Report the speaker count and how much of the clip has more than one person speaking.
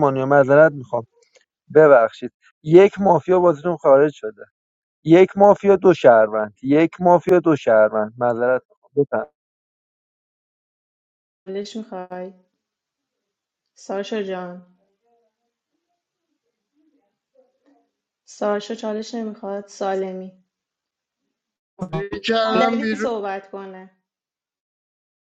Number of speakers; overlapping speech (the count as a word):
three, about 3%